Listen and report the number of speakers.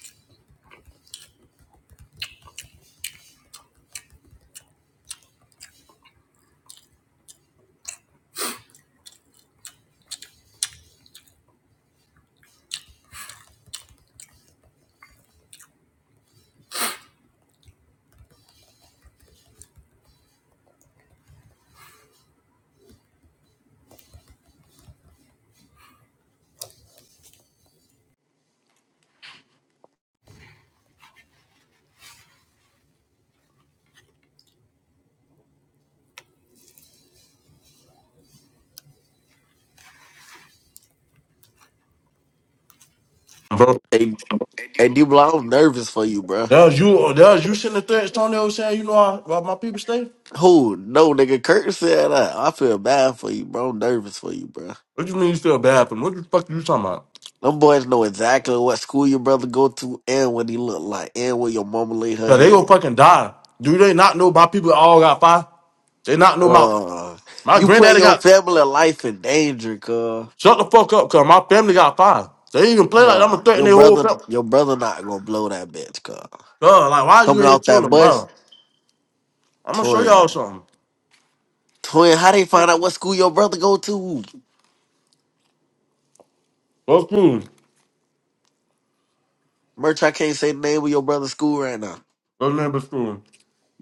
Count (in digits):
2